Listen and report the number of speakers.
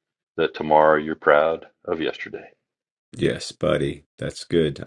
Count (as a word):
two